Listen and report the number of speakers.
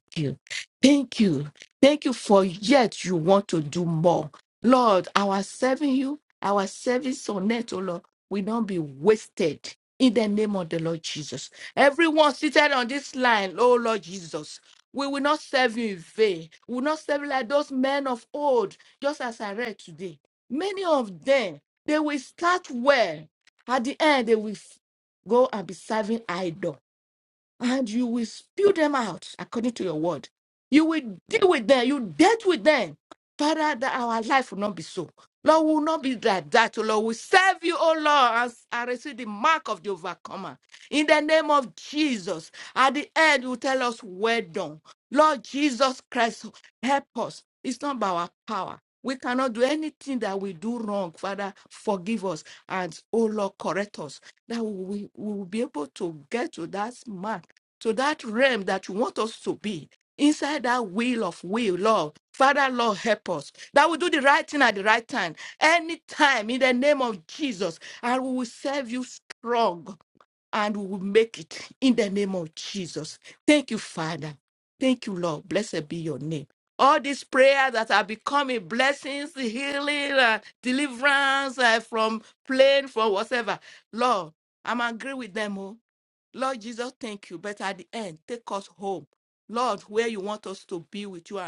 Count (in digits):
1